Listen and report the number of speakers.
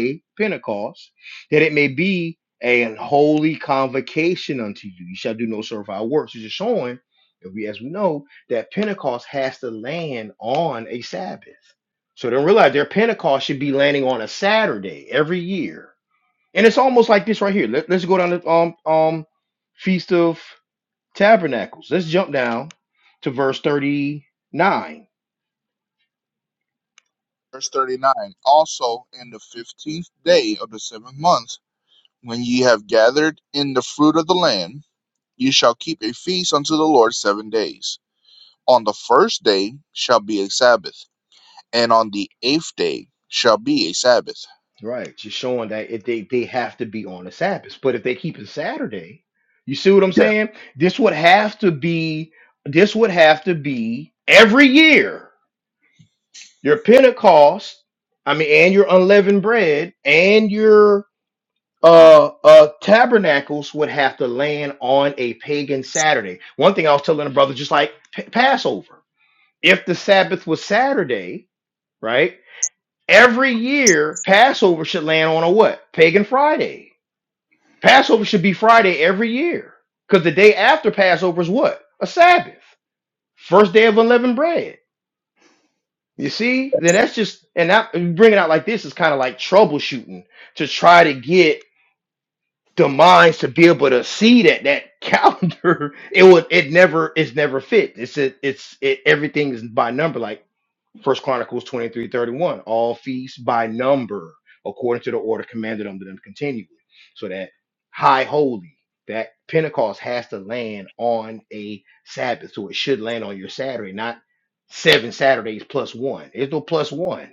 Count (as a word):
two